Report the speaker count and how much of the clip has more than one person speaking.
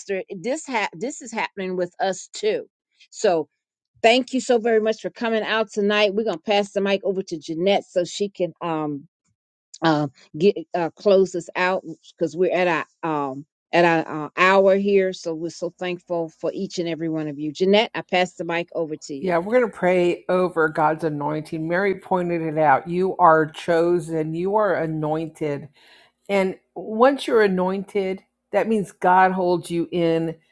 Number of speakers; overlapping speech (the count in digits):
2, under 1%